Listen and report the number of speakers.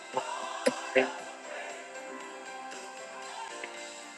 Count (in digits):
0